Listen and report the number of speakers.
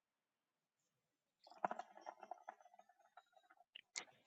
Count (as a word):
zero